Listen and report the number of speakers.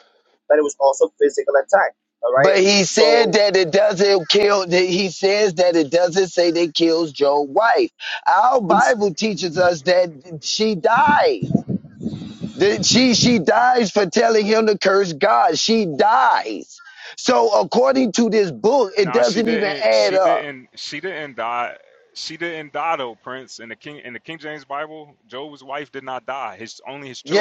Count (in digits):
3